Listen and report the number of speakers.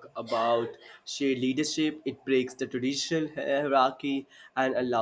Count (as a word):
one